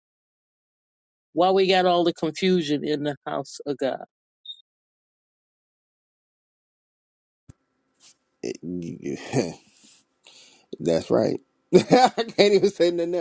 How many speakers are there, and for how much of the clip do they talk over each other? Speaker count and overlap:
two, no overlap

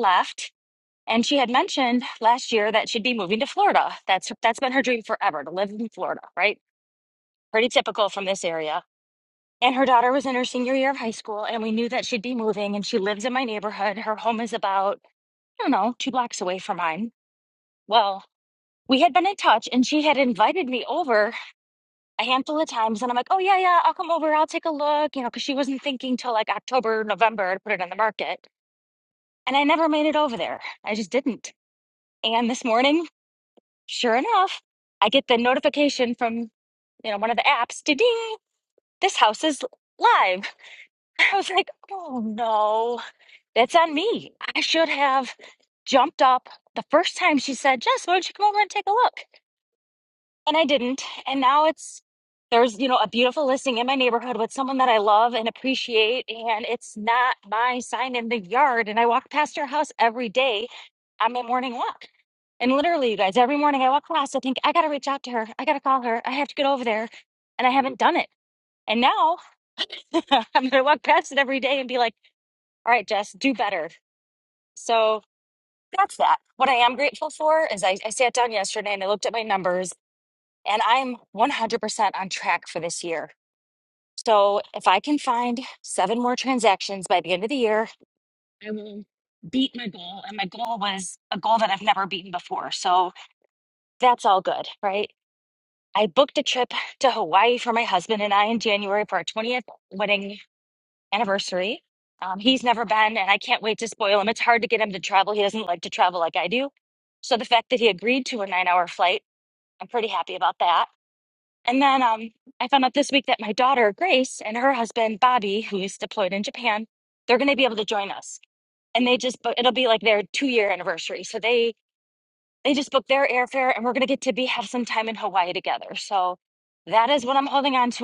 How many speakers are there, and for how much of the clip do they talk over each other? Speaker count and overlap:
one, no overlap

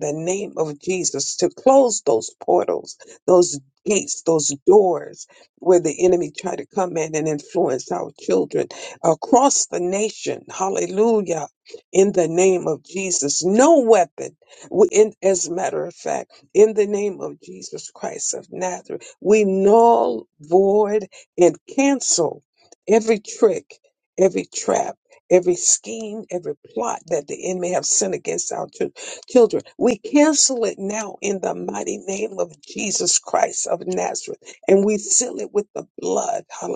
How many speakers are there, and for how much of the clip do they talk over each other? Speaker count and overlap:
one, no overlap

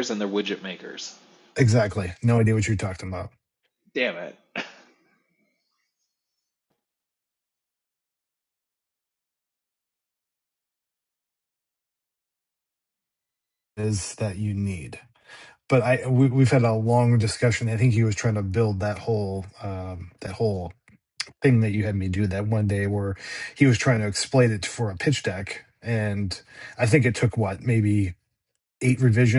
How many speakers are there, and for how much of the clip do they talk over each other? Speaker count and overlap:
two, no overlap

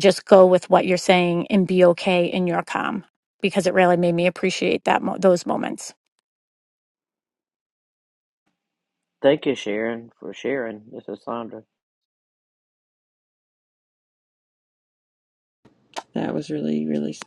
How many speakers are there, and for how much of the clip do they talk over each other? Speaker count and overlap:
three, no overlap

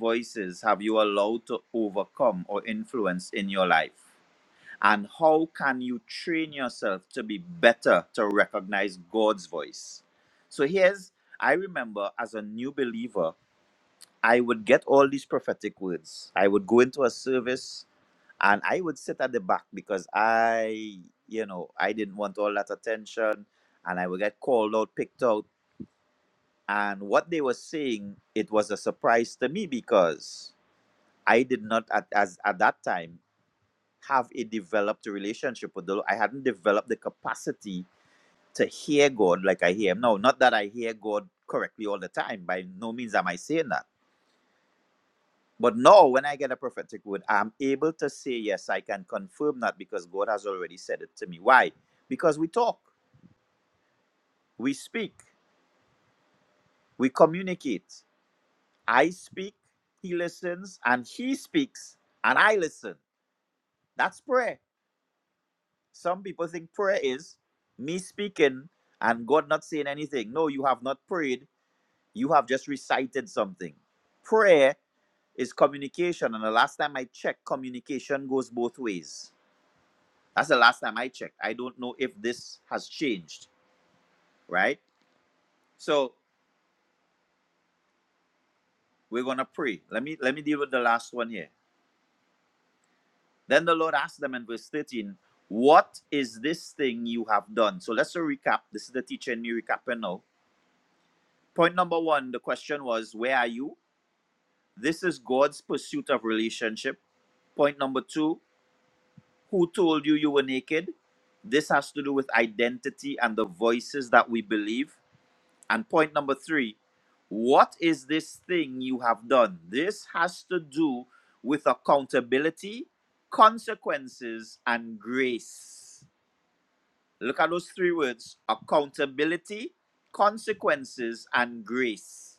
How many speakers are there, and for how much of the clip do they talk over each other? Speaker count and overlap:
one, no overlap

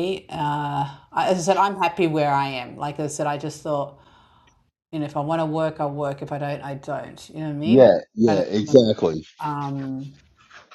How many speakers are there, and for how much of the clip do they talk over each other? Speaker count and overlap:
two, about 4%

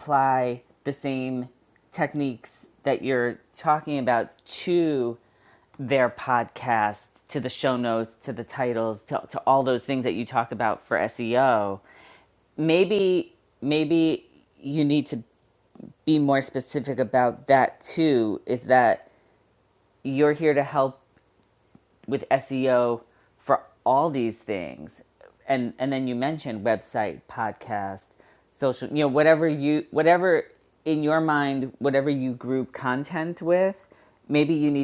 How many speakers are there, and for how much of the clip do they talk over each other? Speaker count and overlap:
one, no overlap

